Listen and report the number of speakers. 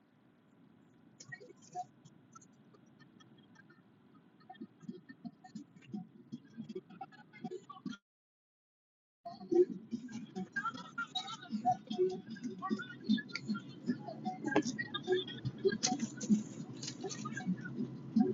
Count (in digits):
0